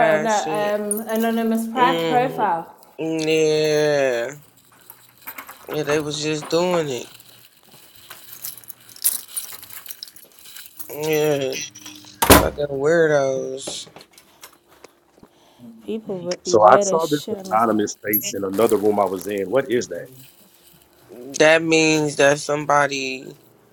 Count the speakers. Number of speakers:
three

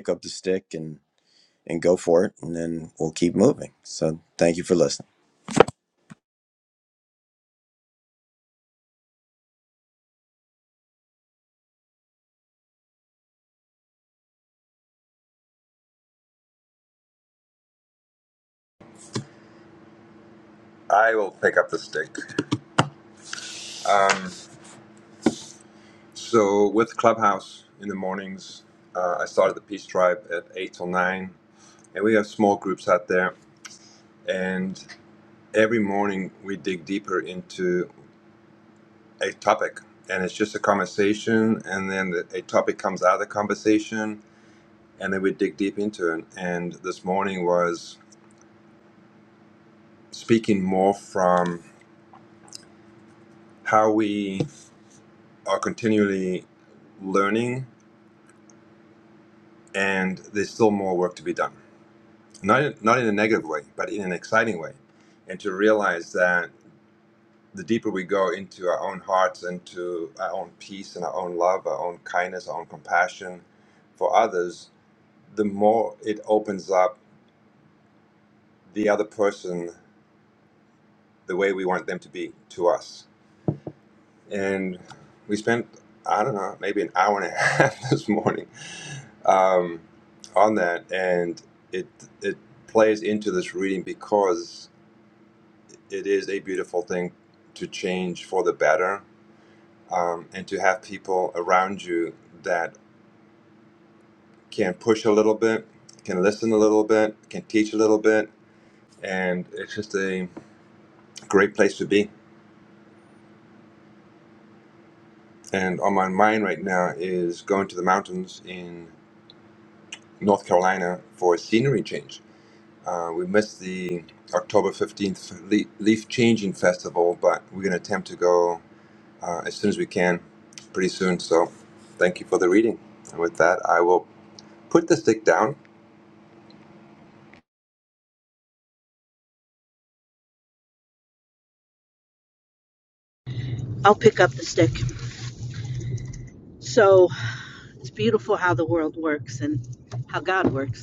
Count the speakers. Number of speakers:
three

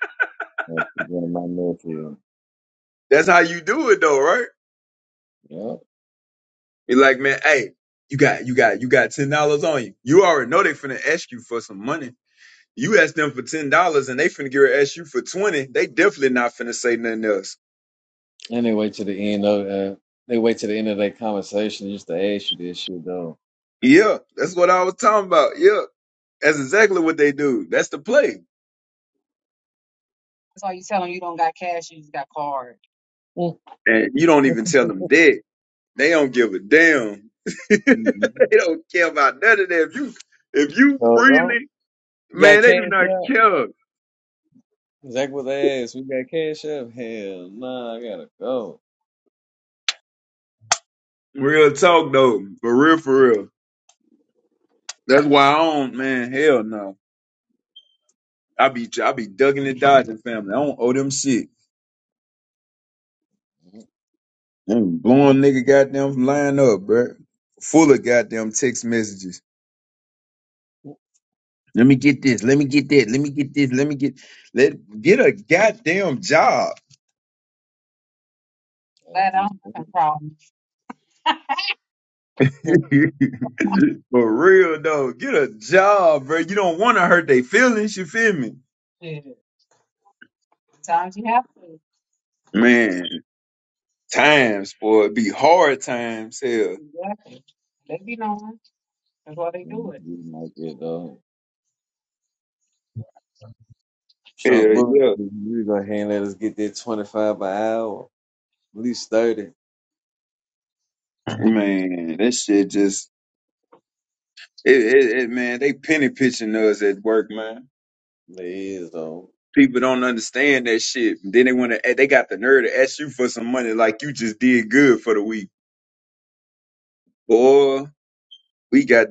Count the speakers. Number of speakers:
three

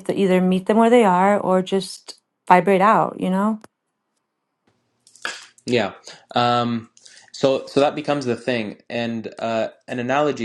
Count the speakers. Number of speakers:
two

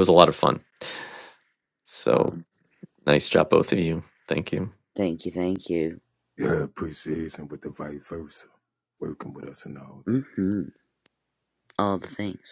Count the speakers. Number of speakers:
three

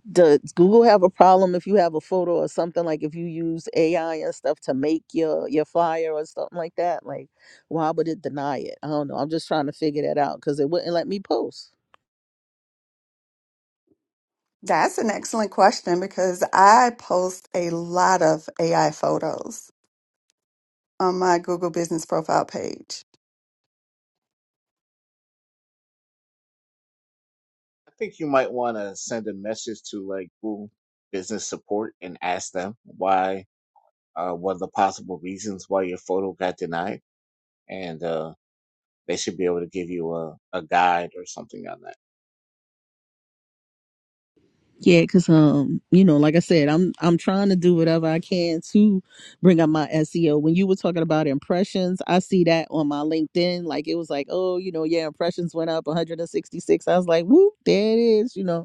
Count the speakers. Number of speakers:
three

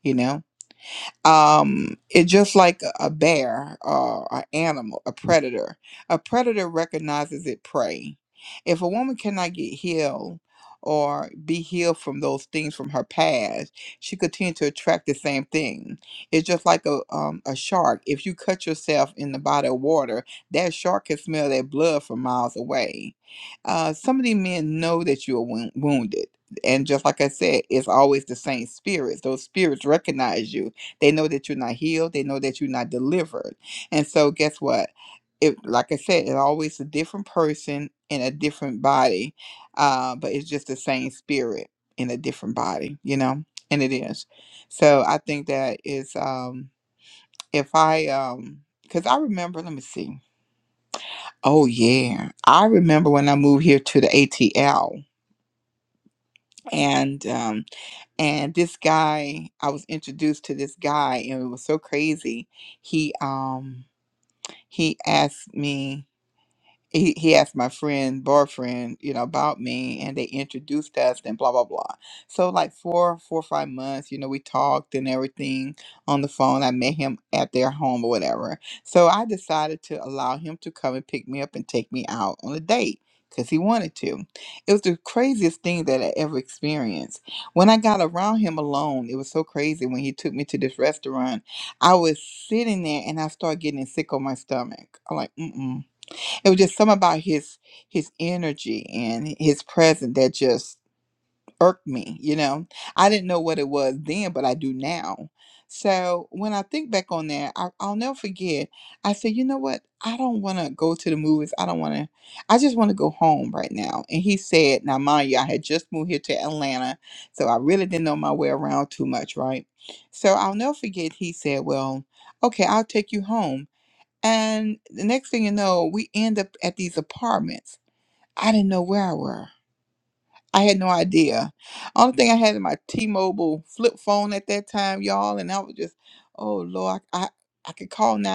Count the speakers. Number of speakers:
one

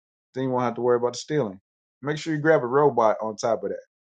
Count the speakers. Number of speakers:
one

